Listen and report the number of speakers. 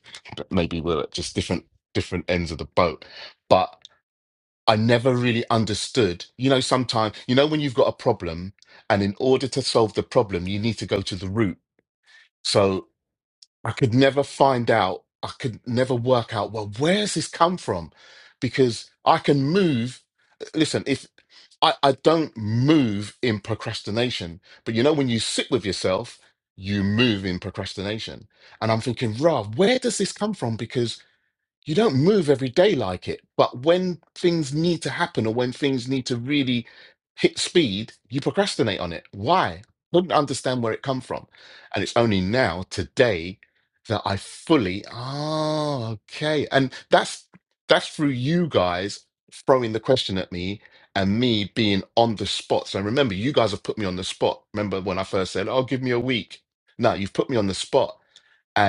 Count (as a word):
one